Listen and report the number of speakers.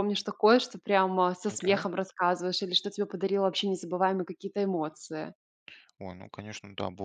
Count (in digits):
2